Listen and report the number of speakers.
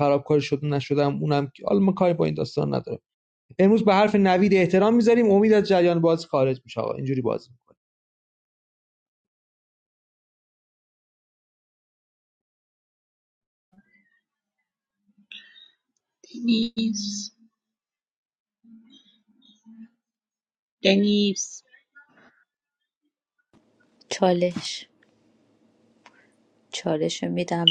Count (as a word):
three